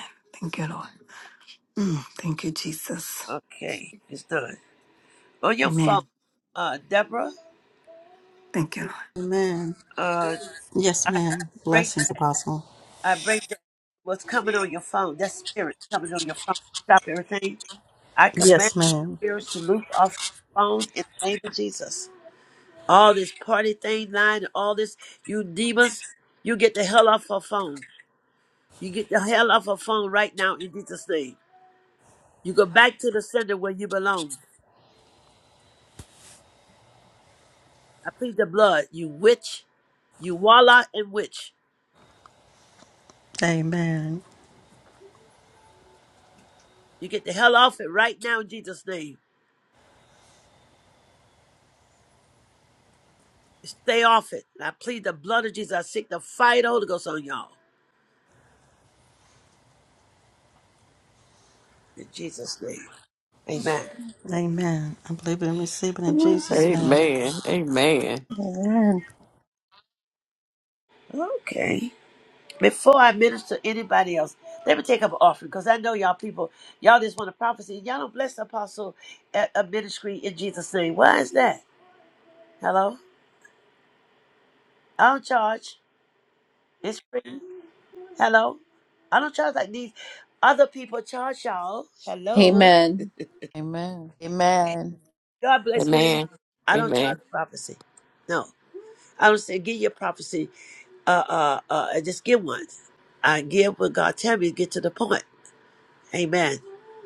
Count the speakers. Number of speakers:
six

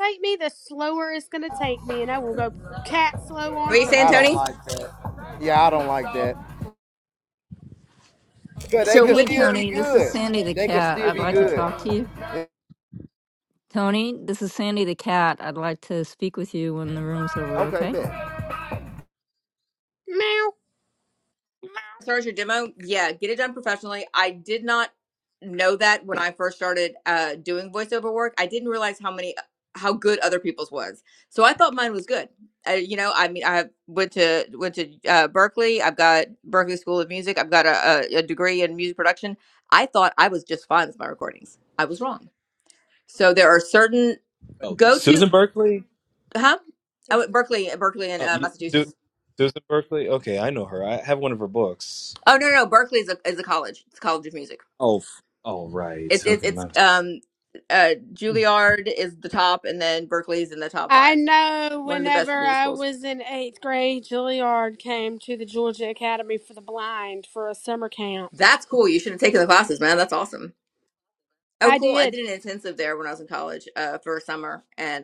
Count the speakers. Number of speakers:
five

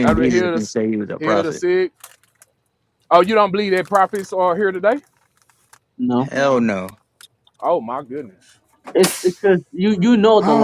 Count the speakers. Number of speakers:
three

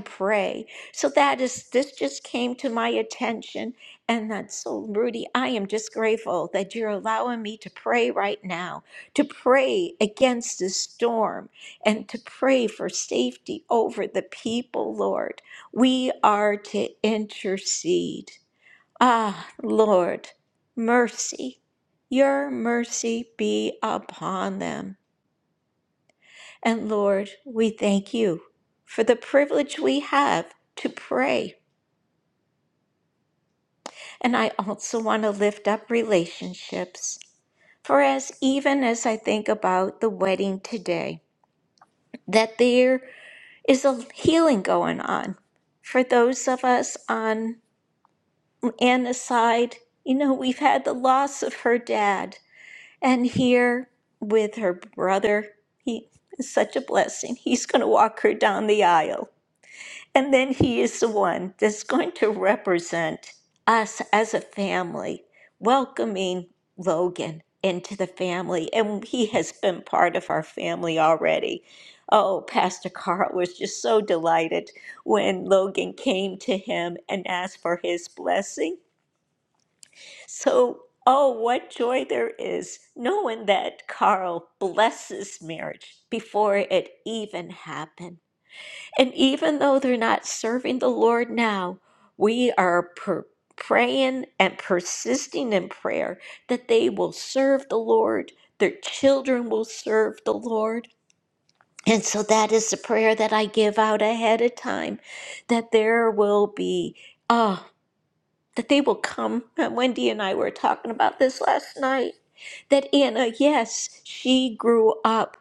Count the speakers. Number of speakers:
one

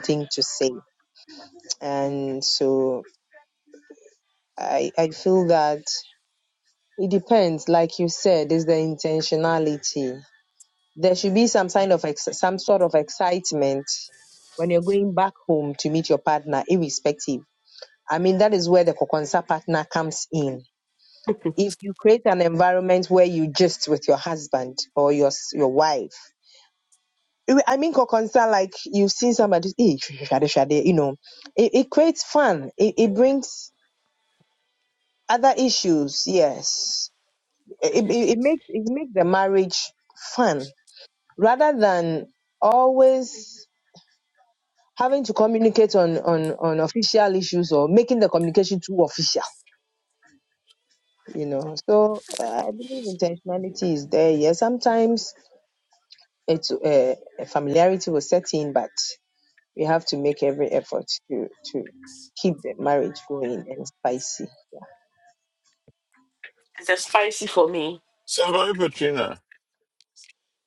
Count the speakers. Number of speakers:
three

